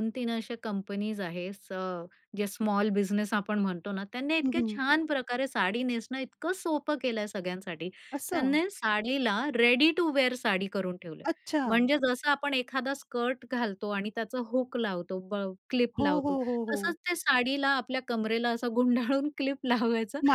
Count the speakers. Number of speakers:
two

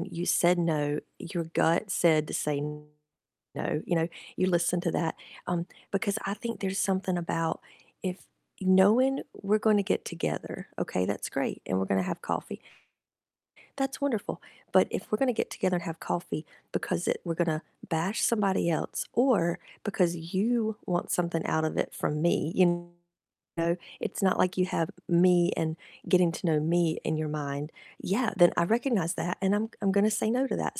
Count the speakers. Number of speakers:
one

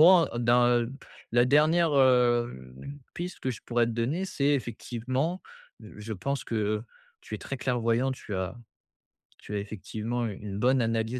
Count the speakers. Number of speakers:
one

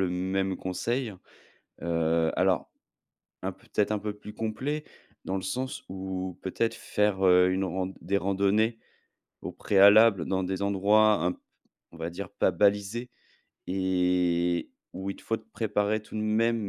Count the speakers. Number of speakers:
one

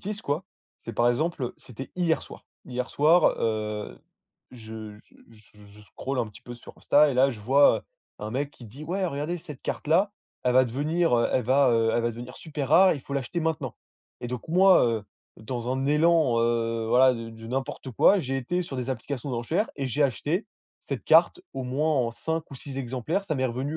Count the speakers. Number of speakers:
one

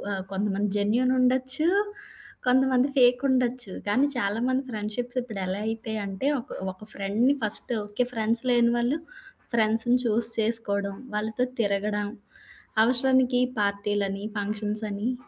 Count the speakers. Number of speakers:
one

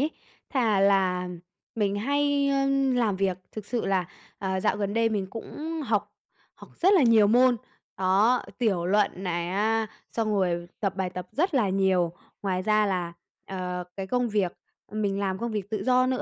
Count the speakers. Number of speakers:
one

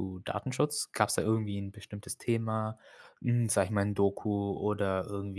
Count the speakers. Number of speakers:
one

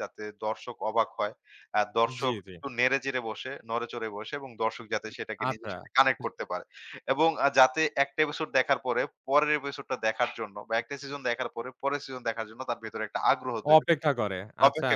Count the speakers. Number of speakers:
two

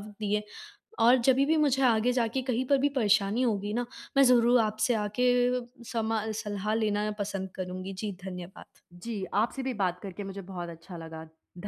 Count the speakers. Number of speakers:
two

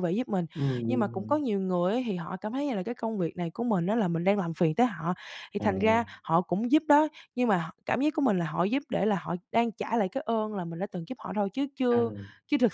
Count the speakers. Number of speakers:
two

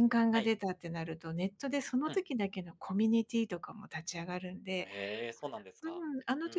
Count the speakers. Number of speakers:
two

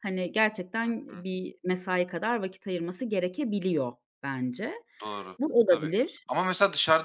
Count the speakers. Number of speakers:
two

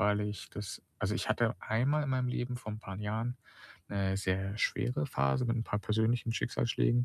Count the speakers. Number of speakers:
one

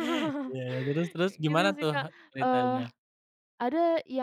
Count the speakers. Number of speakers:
two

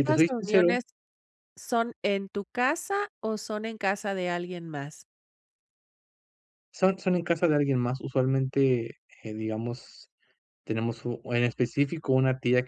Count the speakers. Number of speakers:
two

